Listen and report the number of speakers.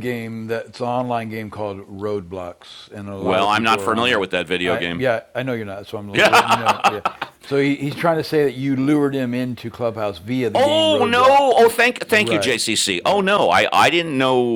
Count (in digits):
2